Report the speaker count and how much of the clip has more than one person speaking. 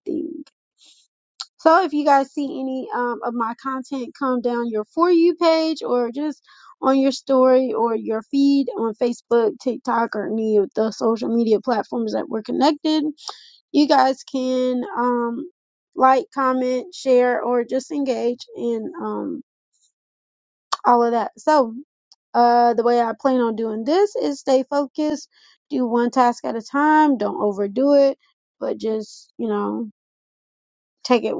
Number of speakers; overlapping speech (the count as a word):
one, no overlap